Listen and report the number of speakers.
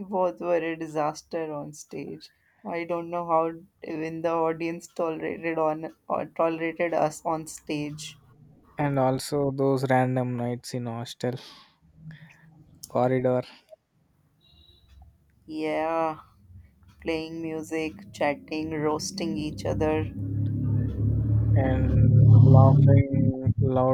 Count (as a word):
two